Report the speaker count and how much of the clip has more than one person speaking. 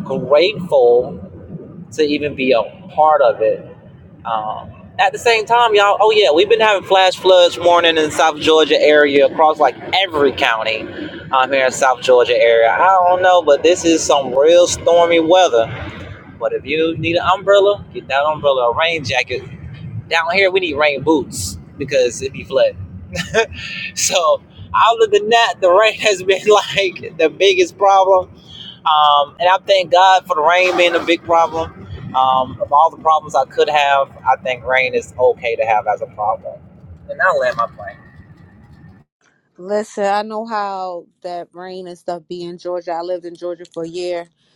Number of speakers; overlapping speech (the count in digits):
2, no overlap